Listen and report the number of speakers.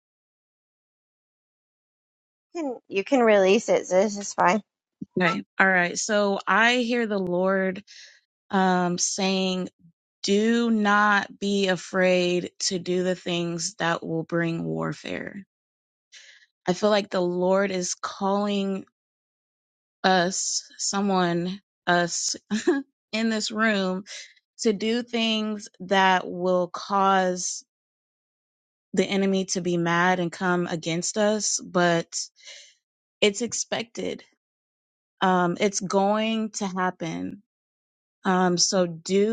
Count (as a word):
two